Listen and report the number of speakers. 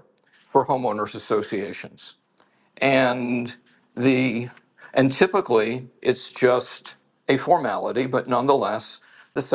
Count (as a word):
one